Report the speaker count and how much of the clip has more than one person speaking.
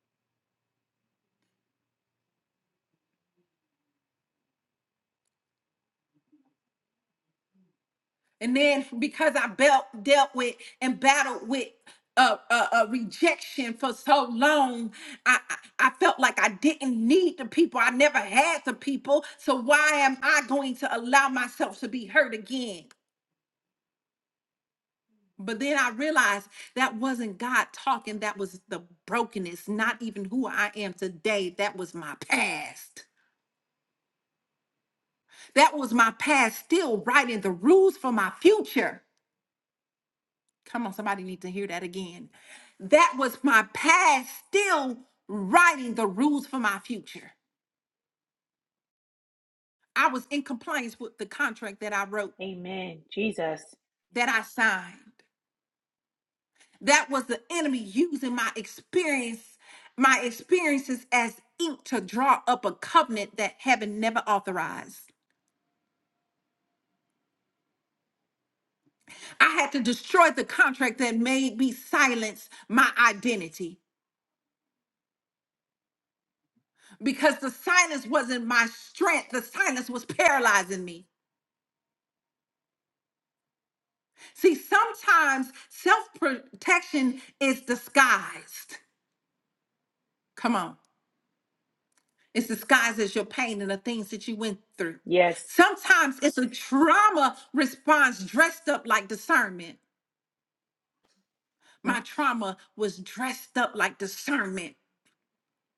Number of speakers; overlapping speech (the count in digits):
2, no overlap